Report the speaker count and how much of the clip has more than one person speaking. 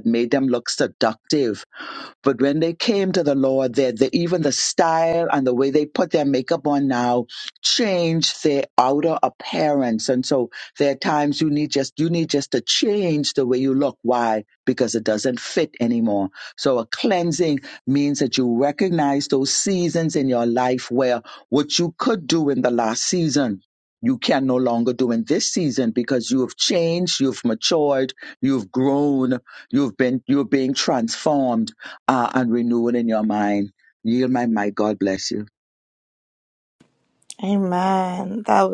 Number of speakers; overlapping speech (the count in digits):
2, no overlap